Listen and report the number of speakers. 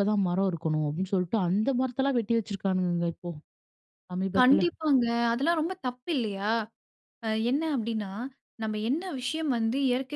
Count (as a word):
two